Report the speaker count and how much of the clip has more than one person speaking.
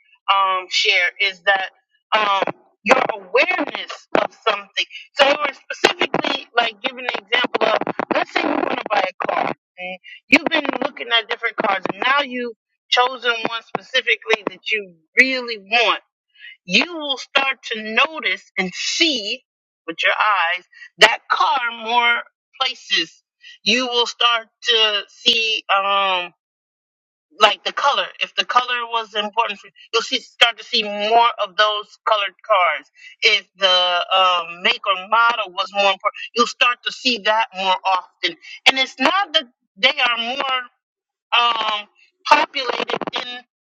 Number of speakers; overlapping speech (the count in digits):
1, no overlap